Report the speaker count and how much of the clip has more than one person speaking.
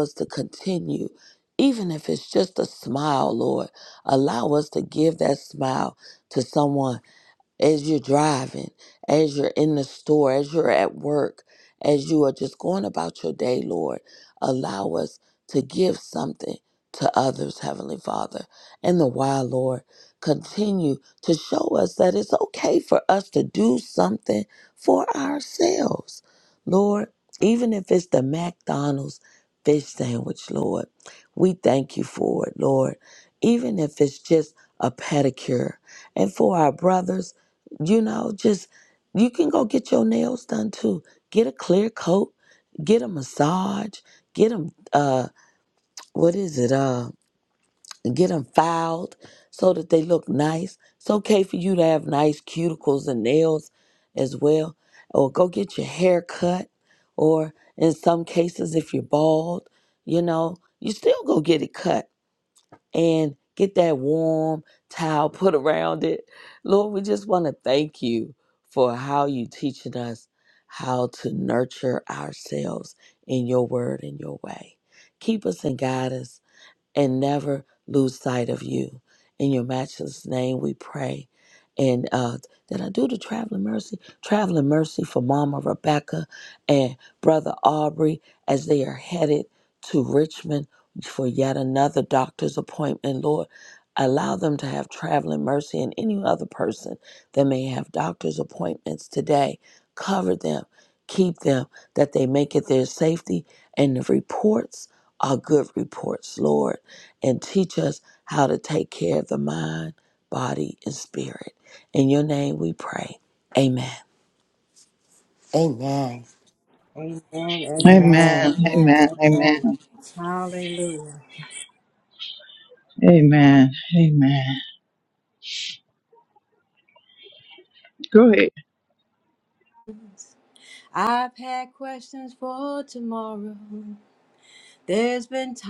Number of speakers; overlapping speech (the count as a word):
four, about 1%